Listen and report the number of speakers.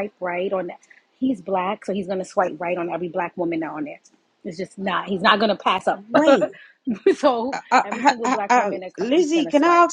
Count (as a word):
two